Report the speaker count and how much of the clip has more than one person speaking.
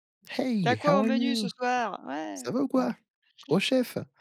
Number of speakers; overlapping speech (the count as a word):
two, about 31%